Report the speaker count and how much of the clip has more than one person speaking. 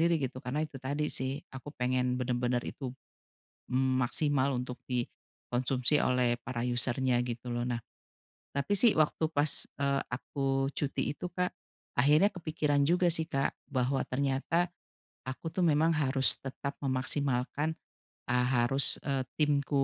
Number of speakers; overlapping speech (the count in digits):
1, no overlap